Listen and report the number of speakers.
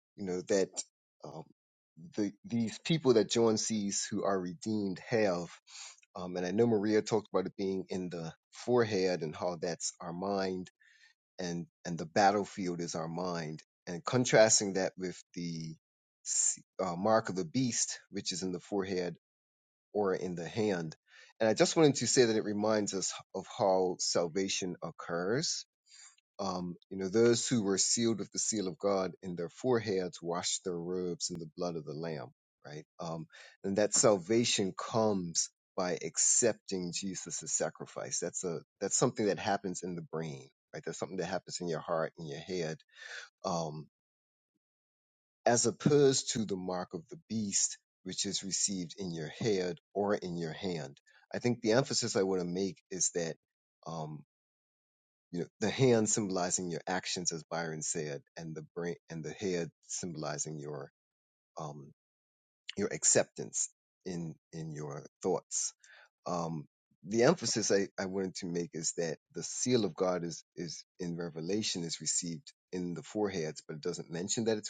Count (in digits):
1